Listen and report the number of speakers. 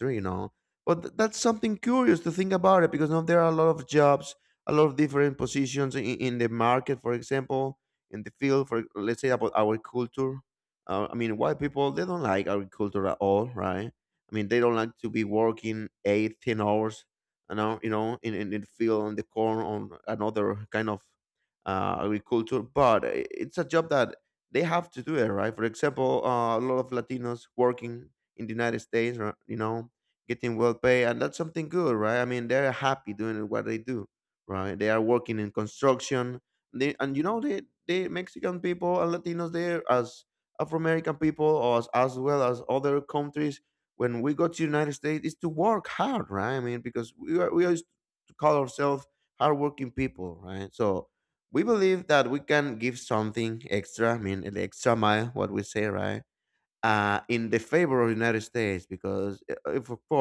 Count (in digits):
1